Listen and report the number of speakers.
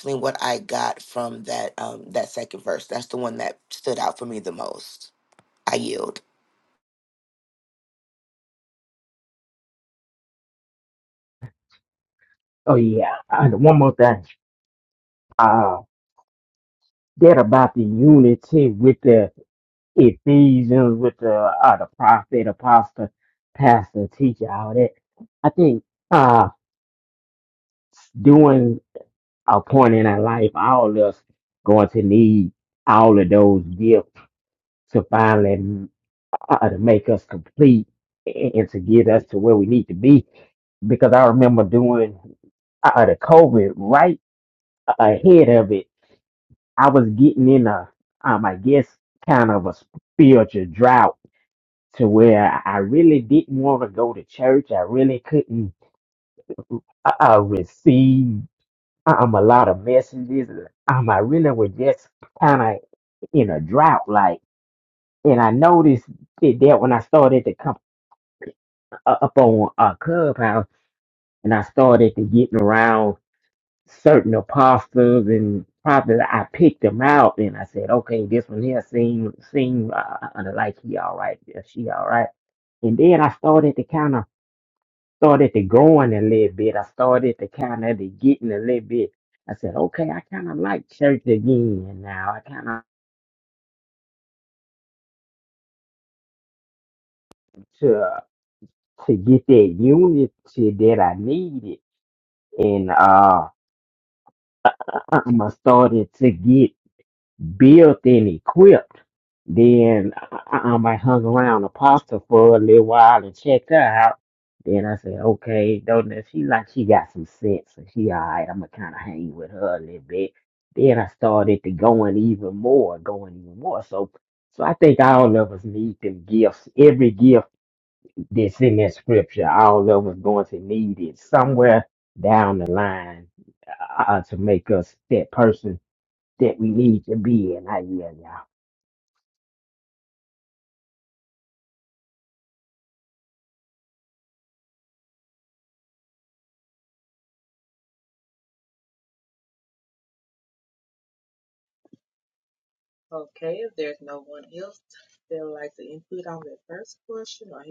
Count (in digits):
3